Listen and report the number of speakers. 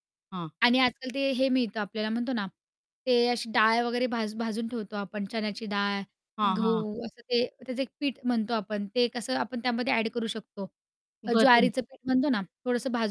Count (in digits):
2